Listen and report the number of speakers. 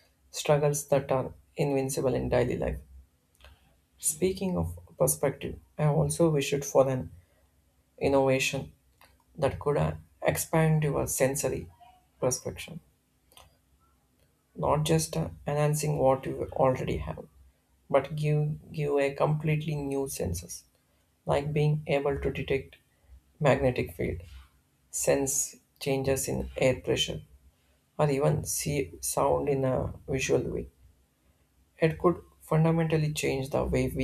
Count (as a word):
one